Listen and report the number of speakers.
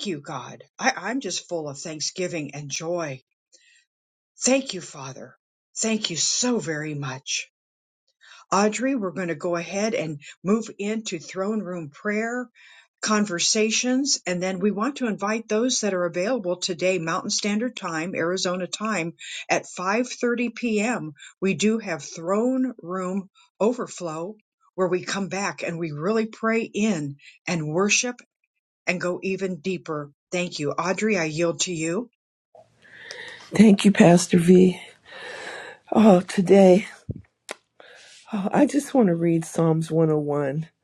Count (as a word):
two